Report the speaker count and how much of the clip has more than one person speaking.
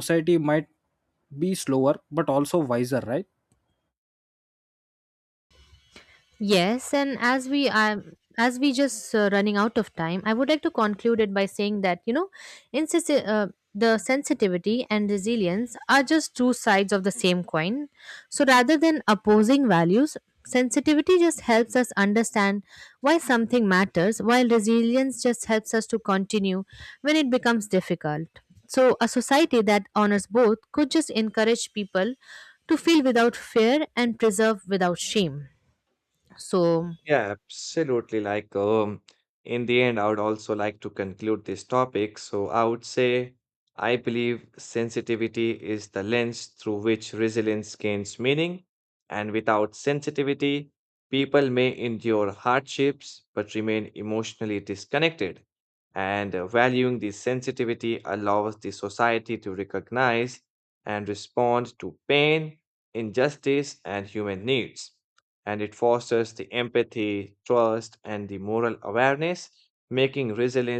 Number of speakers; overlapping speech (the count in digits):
3, no overlap